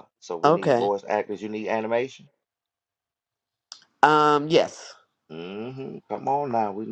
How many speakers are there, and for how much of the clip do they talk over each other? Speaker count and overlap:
2, about 7%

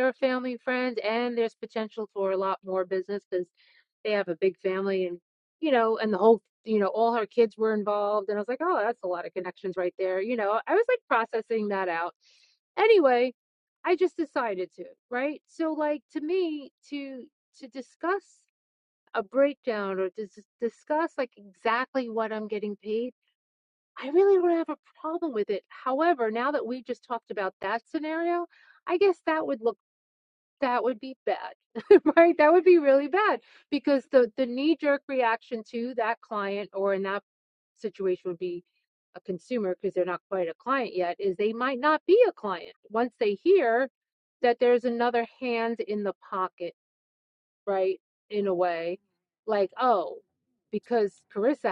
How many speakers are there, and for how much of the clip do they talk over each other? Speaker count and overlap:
1, no overlap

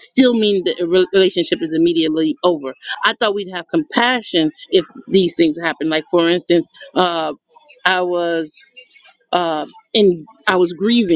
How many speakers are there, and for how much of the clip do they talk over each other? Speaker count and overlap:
1, no overlap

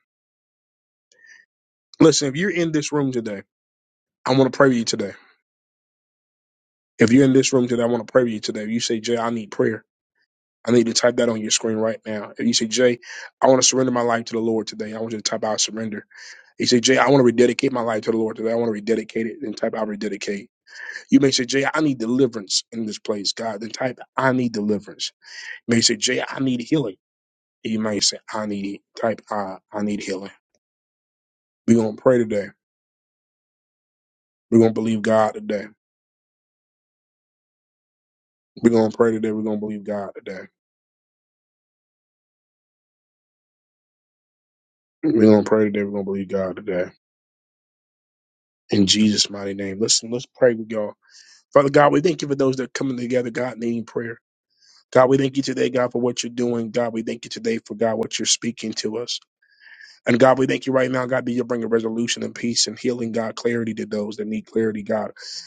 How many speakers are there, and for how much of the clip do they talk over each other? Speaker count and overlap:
1, no overlap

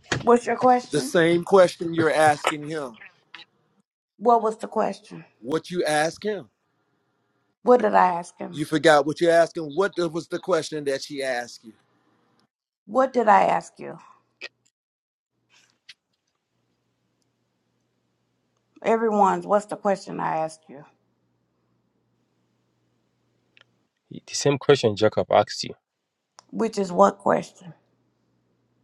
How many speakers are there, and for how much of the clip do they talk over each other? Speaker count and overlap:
3, about 1%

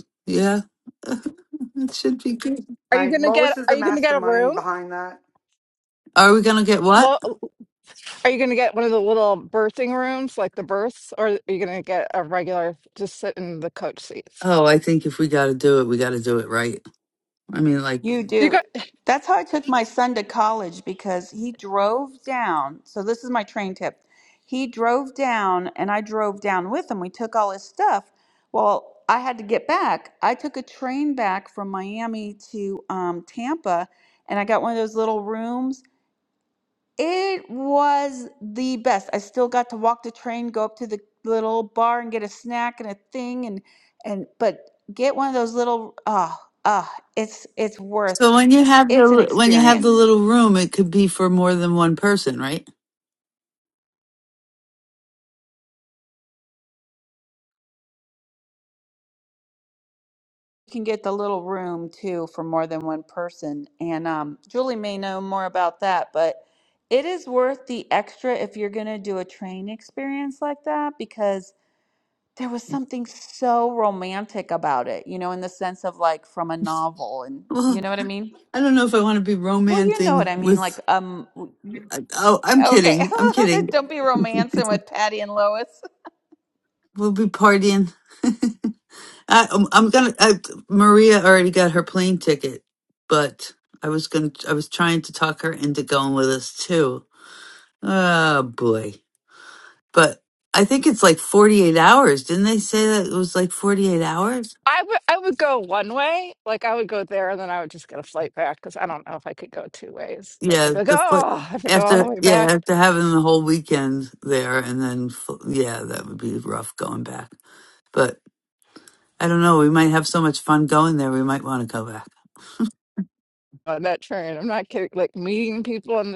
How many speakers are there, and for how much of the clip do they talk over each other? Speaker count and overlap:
4, about 5%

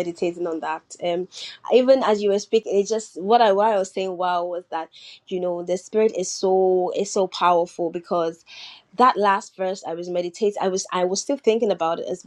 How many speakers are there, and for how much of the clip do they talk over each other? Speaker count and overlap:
1, no overlap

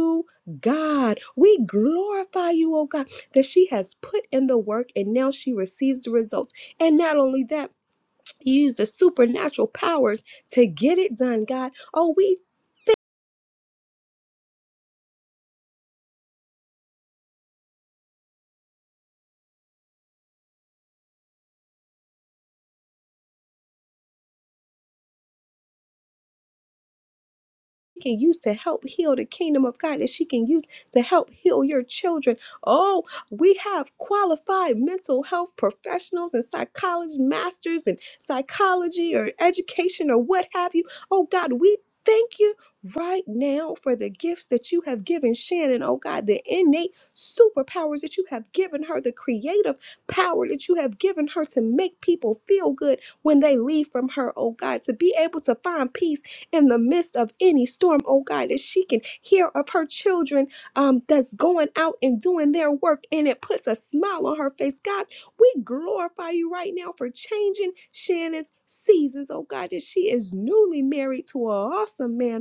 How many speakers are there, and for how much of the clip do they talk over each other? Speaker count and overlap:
1, no overlap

